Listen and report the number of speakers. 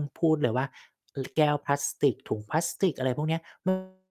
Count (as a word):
one